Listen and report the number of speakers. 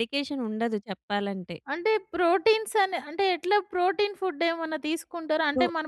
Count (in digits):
2